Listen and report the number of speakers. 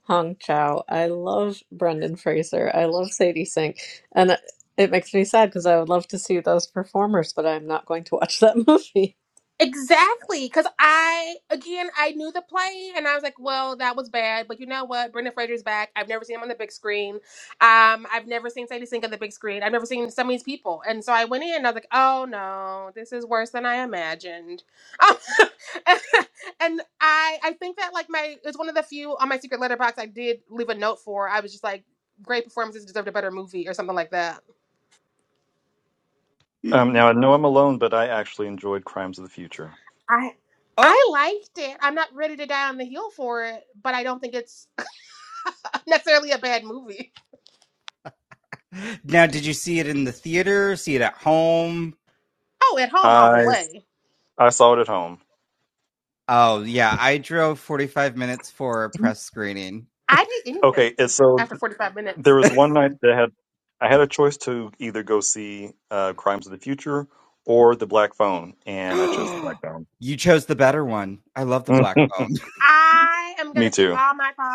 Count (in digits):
4